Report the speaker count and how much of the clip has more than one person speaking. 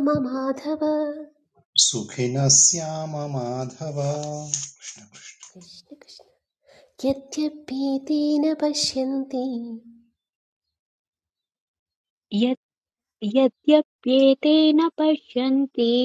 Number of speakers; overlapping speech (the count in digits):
3, no overlap